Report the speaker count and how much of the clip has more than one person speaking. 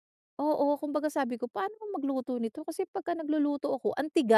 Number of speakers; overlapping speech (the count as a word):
one, no overlap